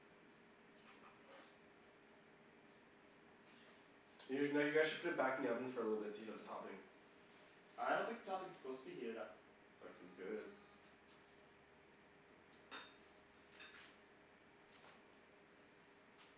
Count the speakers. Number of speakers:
2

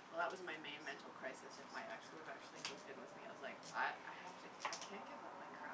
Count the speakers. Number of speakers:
1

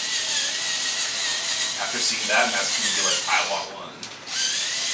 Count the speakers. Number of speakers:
1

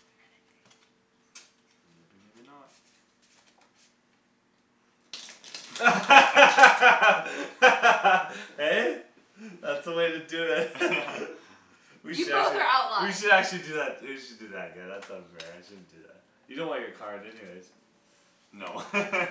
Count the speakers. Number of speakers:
3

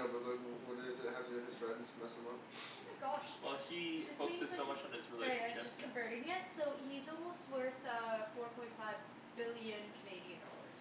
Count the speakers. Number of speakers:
3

